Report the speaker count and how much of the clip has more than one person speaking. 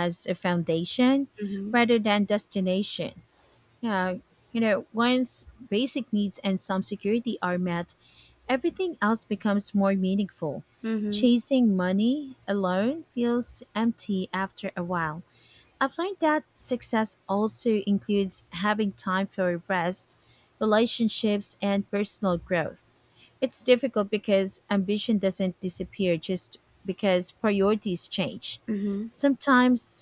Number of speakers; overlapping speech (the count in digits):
2, about 1%